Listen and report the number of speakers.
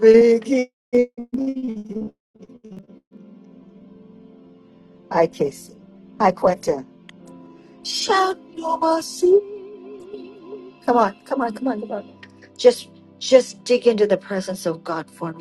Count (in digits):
1